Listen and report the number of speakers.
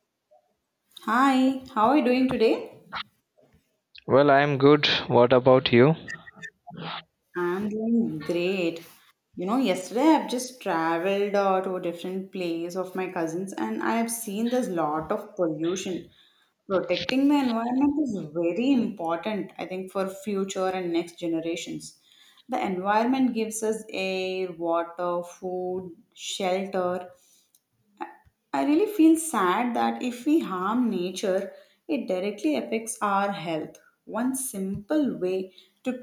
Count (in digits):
2